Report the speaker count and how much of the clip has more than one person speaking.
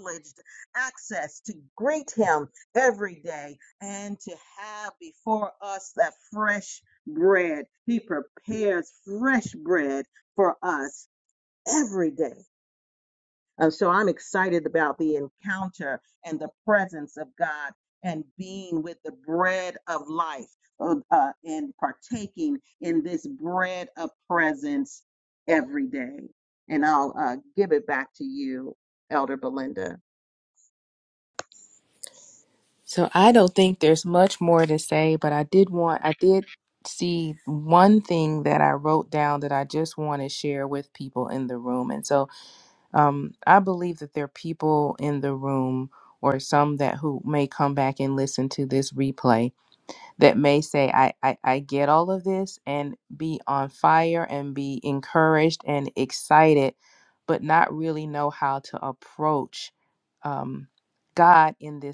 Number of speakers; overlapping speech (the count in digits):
2, no overlap